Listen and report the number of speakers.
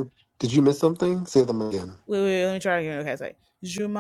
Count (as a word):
two